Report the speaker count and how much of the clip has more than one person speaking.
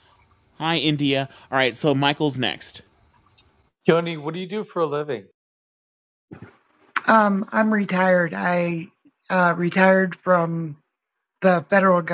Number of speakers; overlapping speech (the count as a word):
three, no overlap